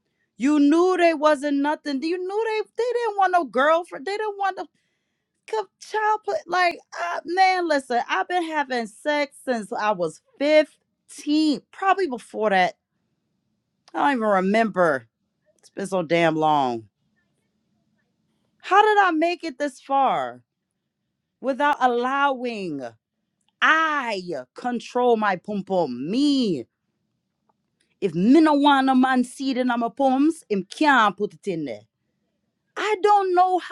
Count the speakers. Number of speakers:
1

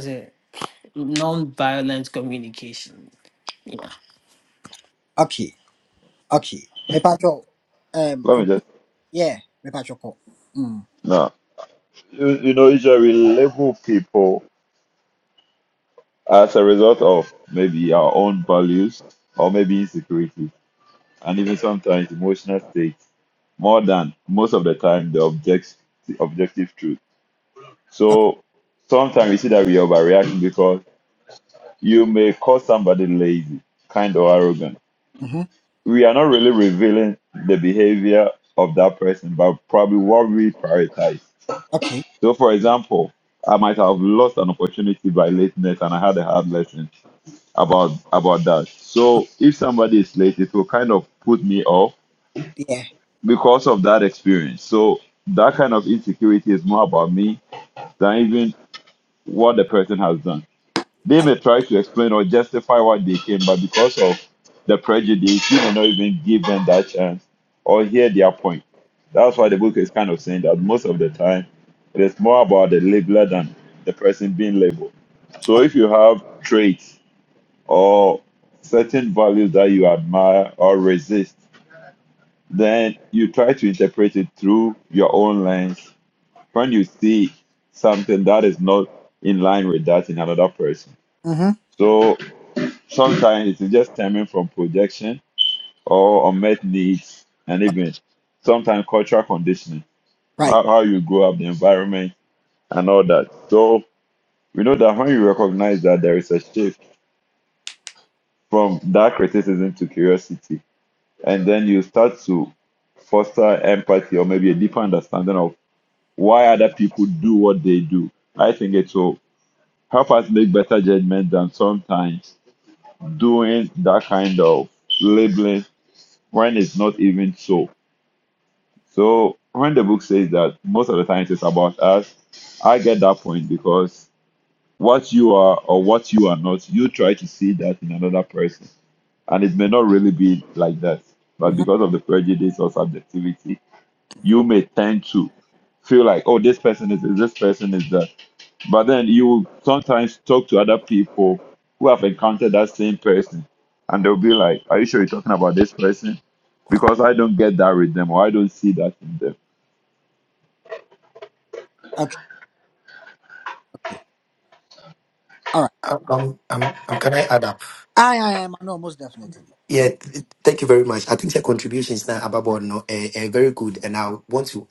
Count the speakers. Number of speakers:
4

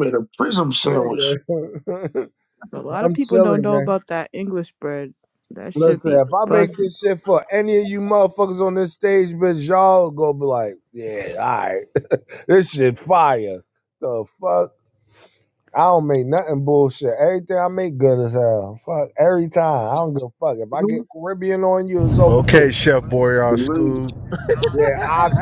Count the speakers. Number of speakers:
4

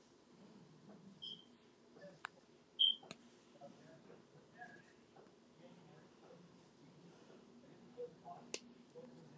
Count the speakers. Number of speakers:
0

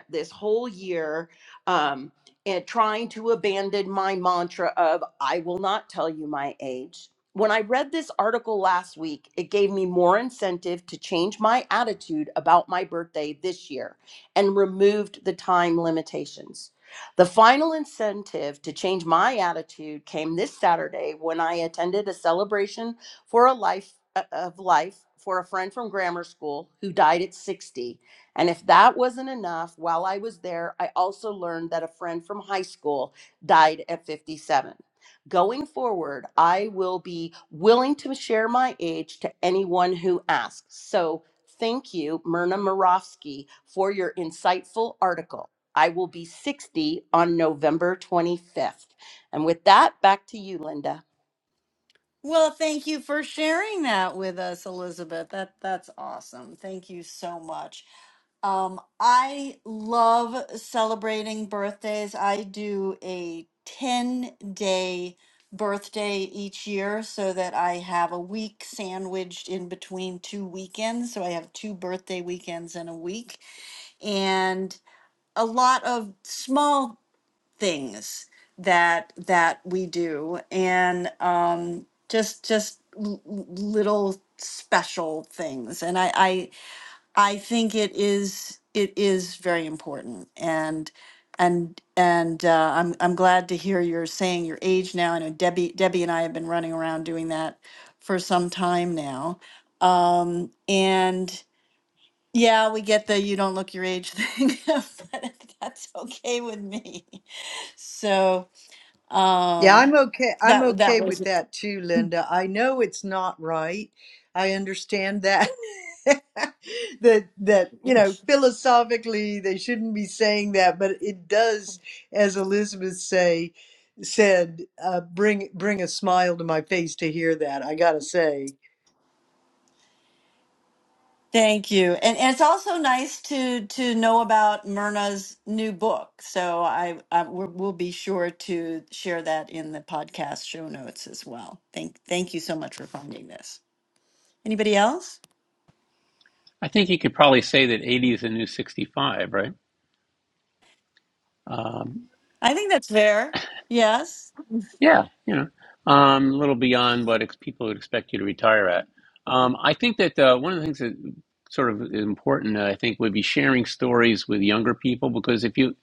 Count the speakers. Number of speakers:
4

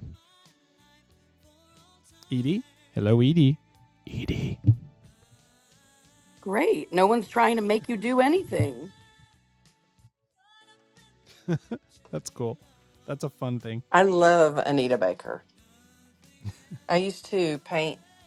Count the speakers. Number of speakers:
3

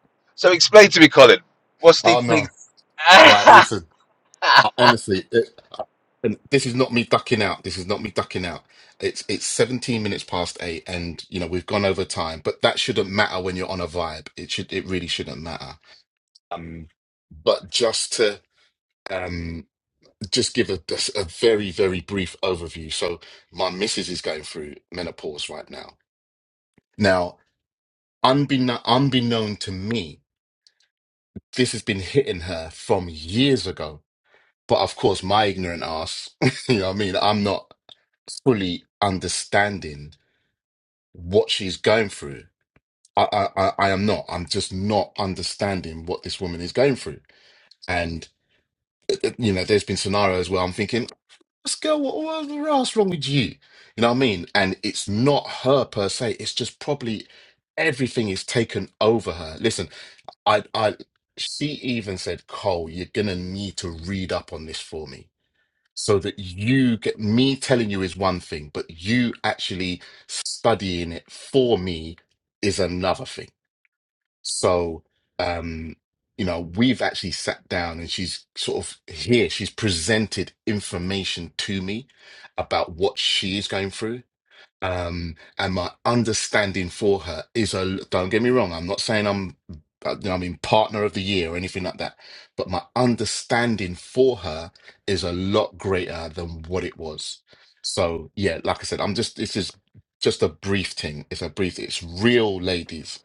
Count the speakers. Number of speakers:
2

